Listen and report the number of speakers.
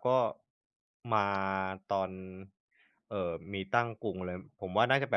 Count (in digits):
1